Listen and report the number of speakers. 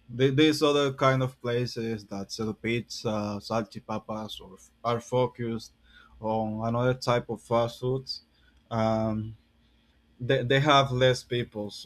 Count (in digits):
1